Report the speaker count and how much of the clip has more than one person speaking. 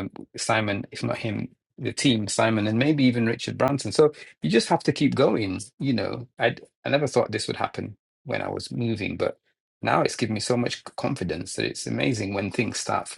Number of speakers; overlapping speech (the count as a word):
one, no overlap